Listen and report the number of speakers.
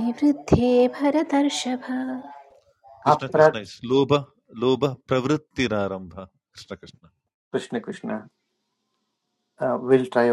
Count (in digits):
3